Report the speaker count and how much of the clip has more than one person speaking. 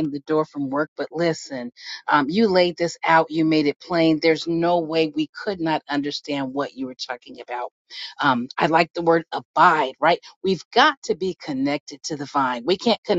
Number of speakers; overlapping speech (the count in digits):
1, no overlap